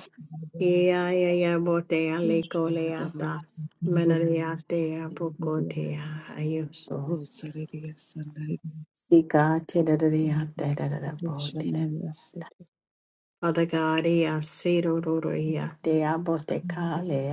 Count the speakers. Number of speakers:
two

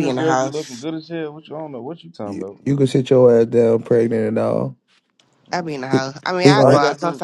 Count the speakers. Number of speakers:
three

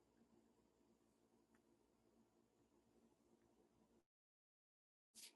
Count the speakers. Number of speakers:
zero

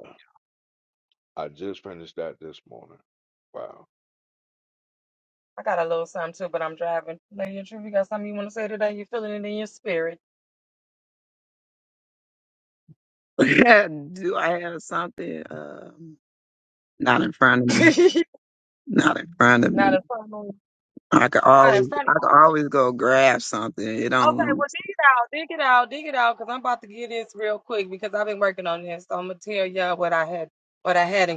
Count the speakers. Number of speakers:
three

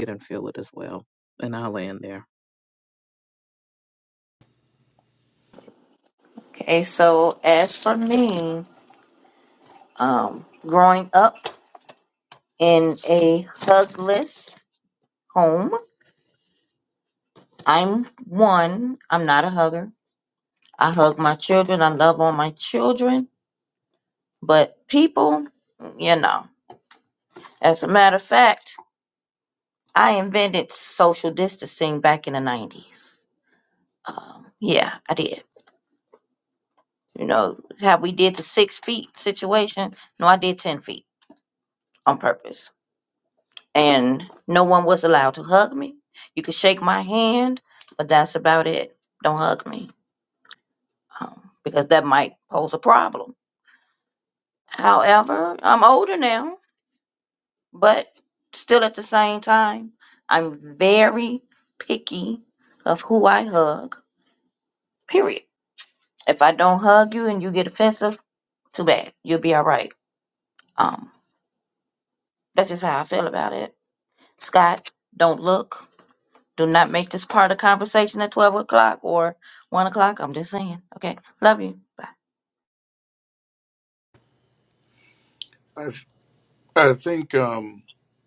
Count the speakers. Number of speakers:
three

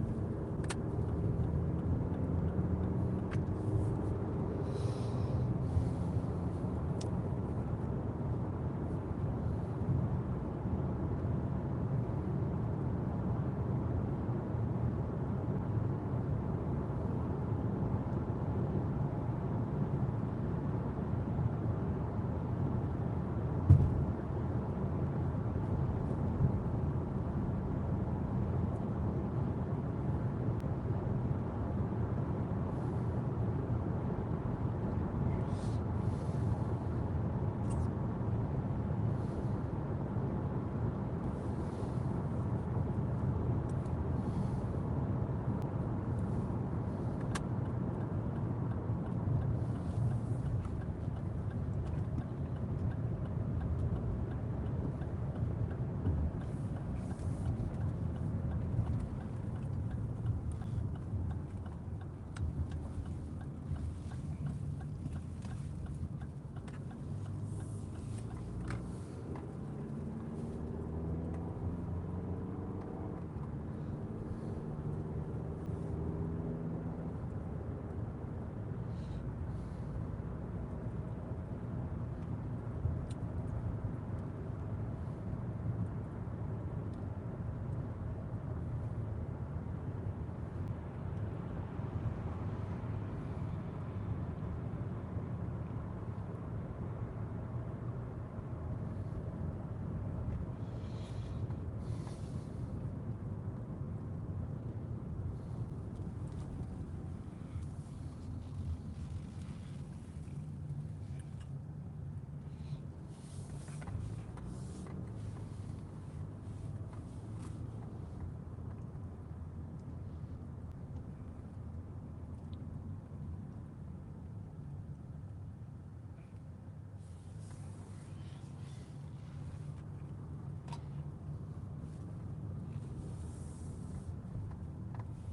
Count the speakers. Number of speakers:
zero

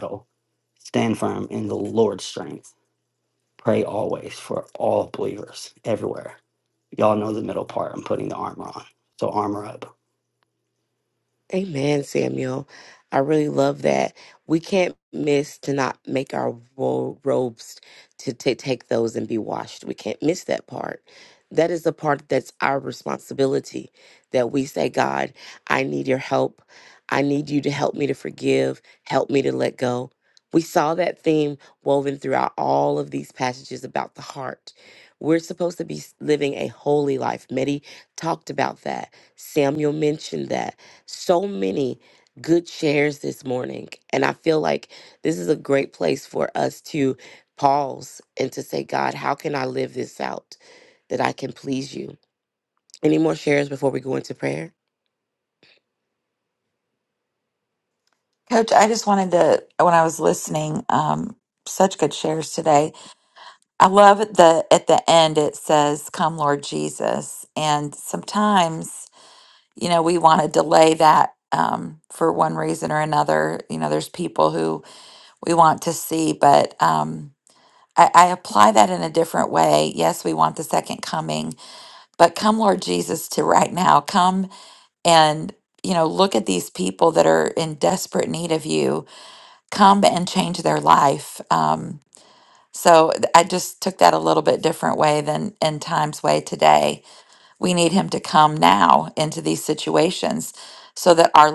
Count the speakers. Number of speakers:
three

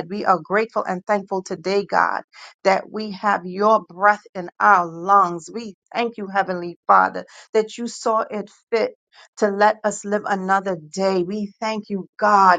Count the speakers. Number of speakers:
one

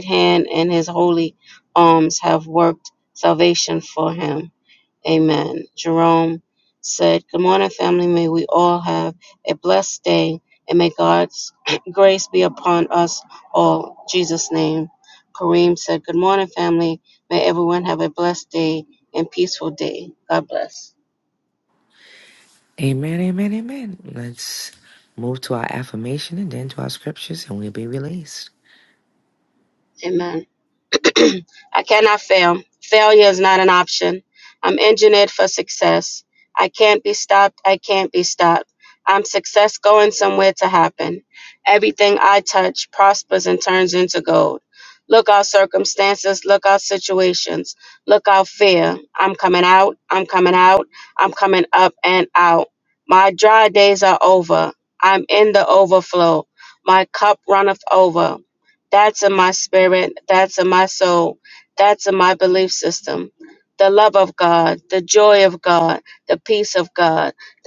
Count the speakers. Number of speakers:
two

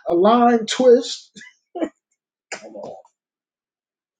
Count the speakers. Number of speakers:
one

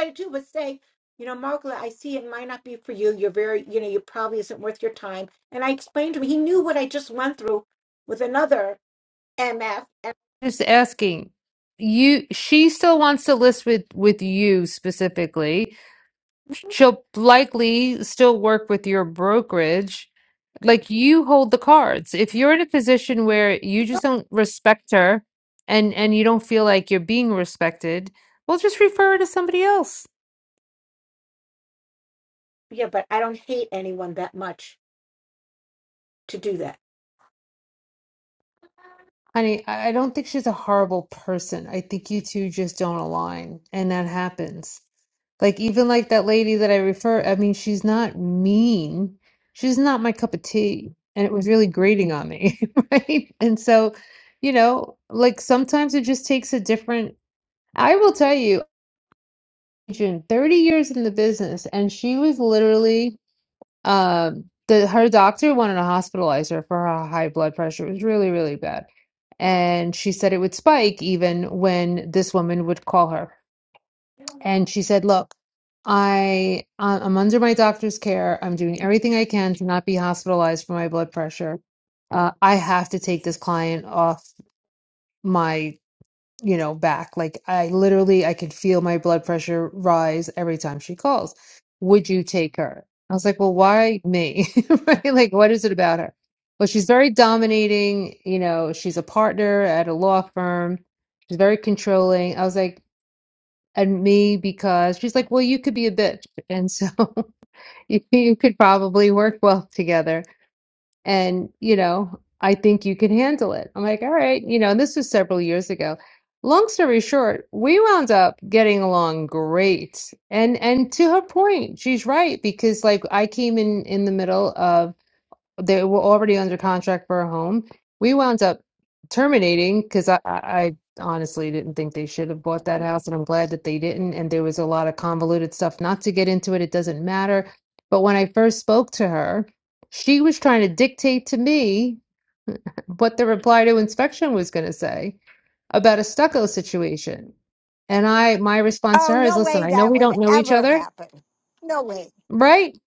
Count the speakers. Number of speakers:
three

